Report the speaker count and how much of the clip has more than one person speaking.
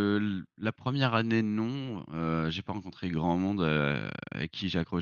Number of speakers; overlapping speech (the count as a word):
one, no overlap